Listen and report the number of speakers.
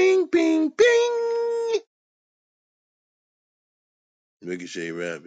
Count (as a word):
one